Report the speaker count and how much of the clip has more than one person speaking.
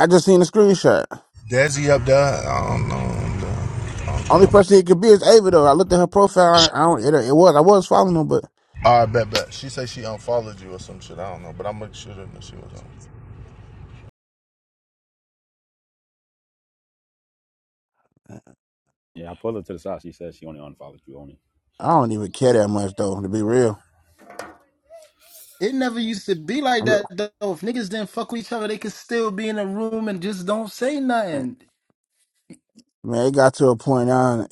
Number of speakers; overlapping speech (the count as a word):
four, about 2%